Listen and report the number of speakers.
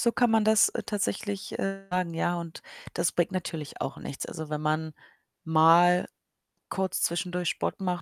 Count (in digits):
1